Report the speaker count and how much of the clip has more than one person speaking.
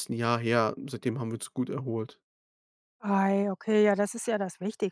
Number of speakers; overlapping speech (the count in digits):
2, no overlap